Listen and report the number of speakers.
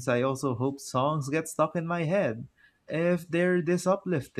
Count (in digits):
1